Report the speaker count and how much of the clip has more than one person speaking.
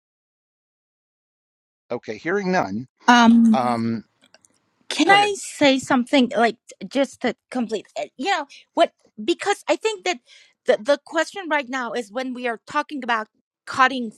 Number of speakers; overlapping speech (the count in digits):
2, about 4%